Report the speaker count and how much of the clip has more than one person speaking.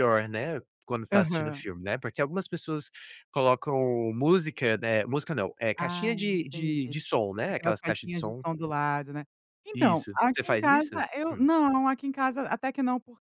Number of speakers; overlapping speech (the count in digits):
2, about 31%